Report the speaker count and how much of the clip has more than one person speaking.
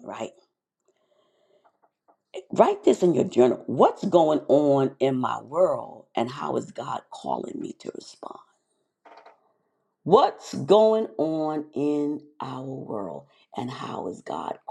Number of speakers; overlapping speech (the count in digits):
1, no overlap